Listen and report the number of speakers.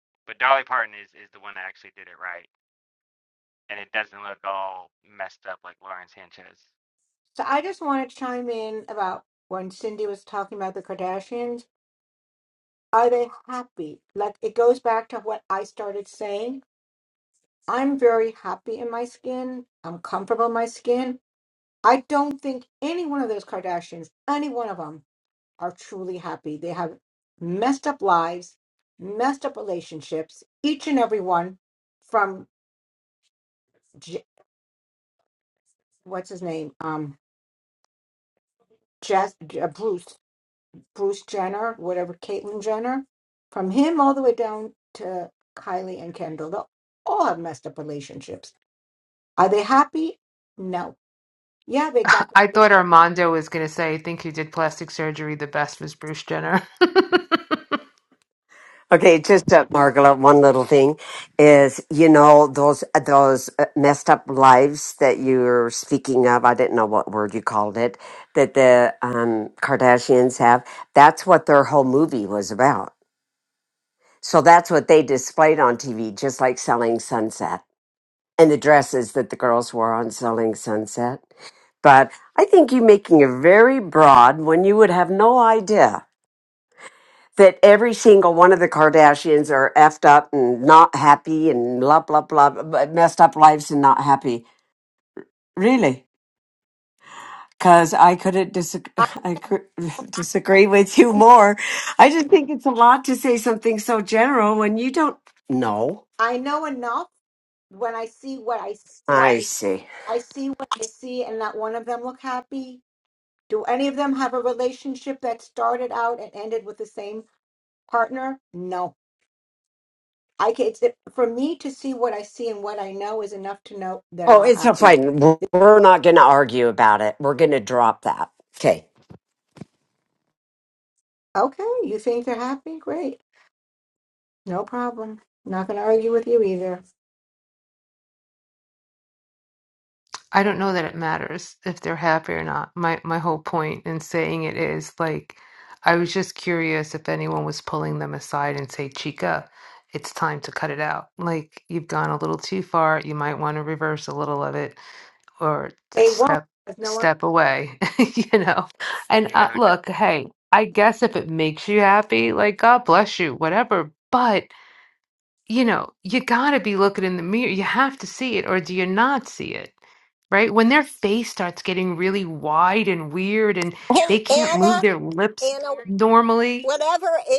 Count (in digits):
5